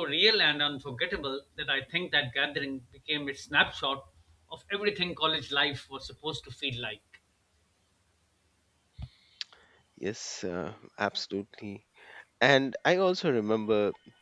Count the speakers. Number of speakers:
2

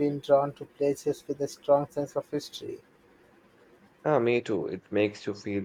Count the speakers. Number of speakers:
2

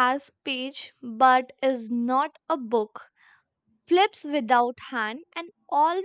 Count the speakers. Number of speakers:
1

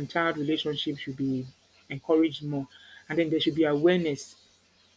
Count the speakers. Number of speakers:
1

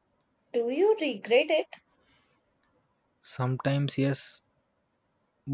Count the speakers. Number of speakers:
2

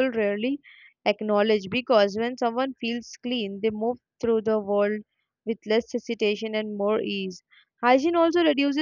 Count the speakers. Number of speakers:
1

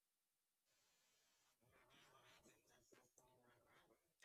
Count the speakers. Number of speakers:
0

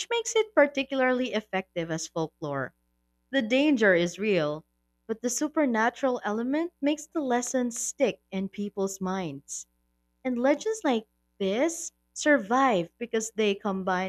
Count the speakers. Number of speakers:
1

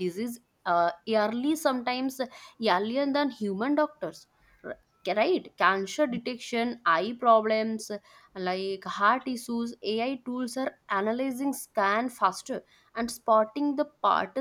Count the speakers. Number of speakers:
1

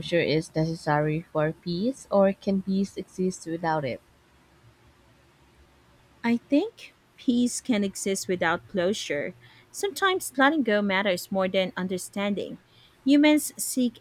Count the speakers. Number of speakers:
2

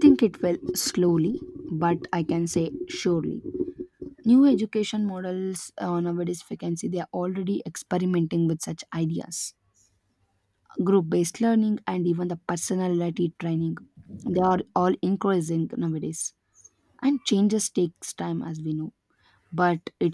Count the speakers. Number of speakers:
1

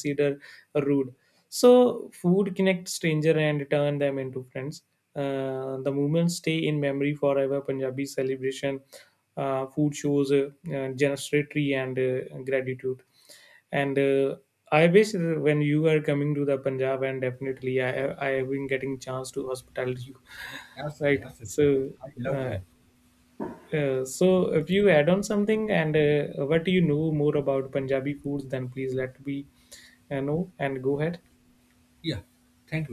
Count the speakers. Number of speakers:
2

